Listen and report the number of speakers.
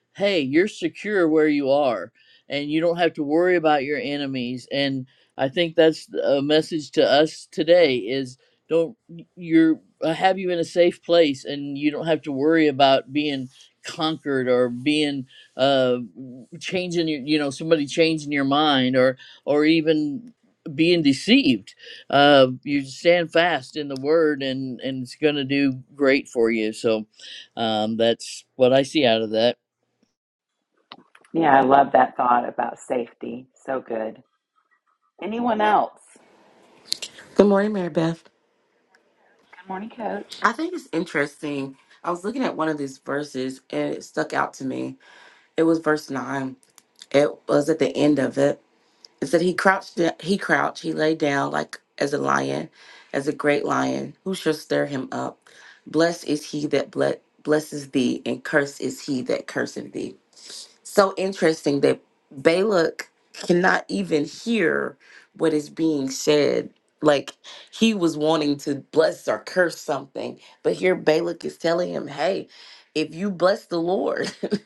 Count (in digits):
3